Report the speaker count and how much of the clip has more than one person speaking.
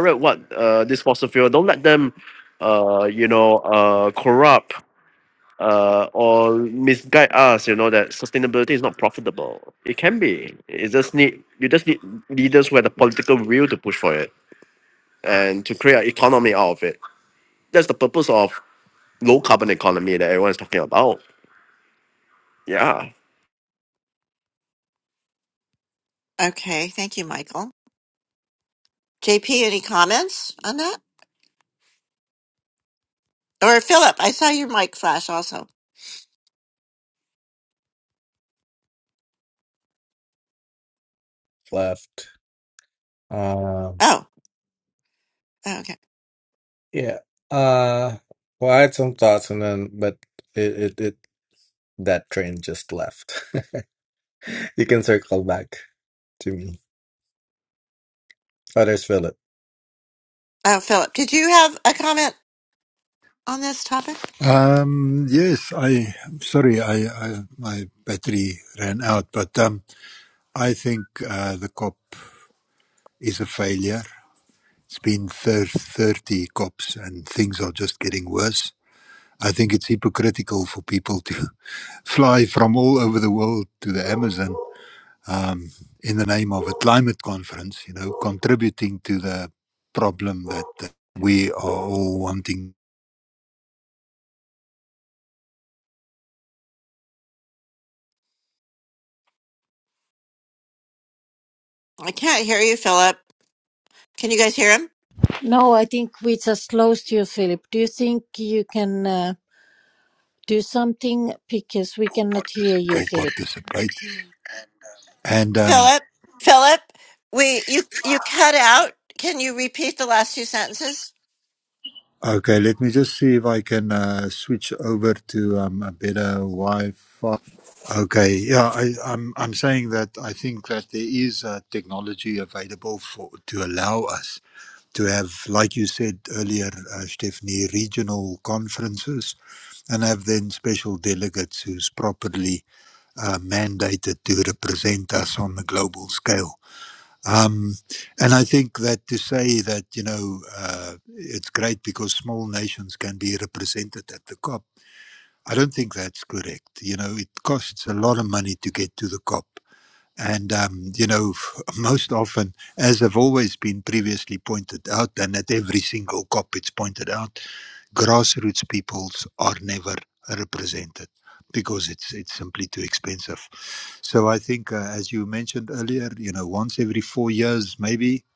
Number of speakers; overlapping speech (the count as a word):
five, under 1%